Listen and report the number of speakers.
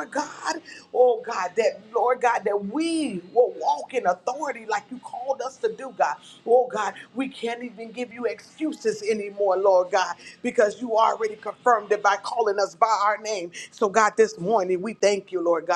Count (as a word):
one